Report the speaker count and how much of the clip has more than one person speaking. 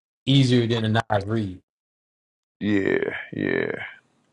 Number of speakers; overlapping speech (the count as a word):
two, no overlap